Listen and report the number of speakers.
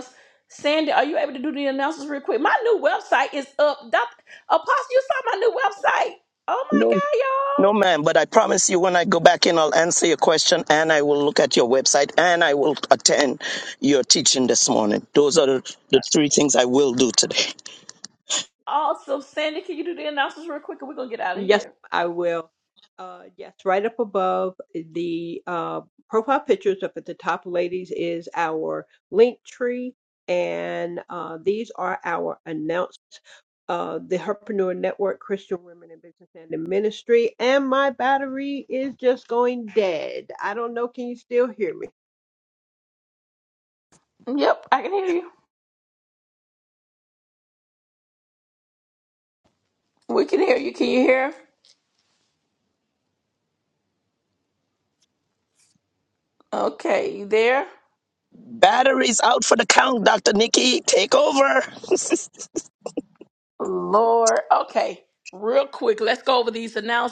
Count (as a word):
three